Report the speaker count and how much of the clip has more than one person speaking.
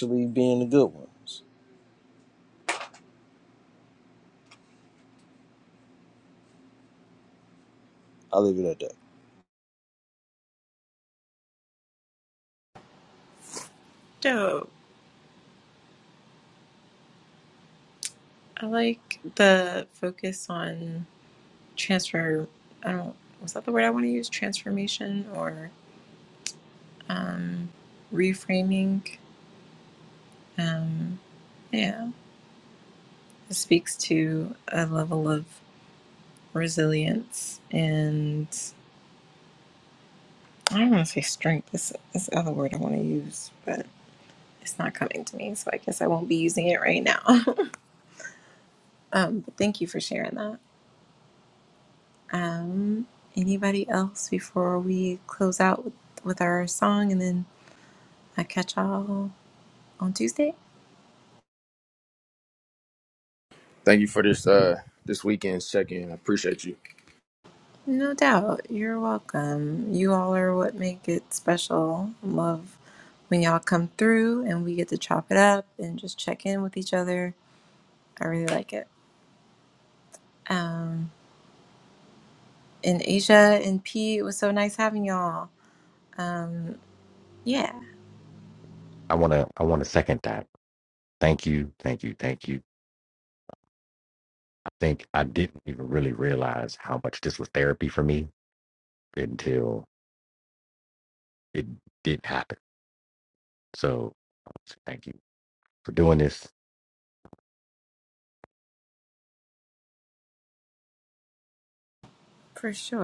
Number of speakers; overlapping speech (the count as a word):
four, no overlap